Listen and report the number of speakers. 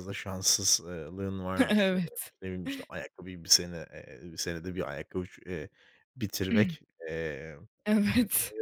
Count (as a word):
two